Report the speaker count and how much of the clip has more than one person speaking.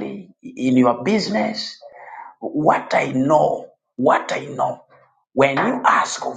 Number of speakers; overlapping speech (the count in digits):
1, no overlap